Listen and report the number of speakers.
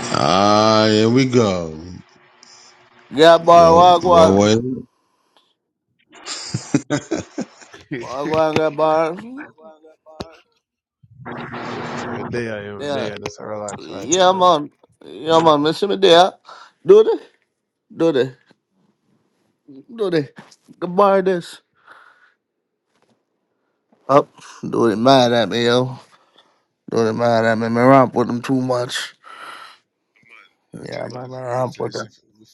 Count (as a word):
three